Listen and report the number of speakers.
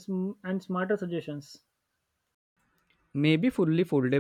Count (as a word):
two